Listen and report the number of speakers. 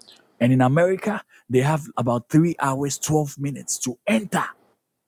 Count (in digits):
1